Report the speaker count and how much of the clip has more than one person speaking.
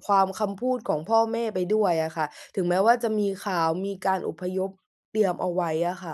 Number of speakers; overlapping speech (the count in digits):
1, no overlap